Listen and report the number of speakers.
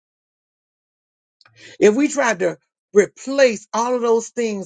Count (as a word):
one